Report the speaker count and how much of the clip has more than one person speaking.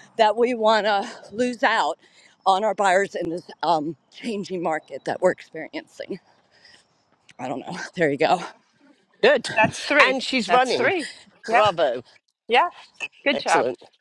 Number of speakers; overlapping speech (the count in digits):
3, about 7%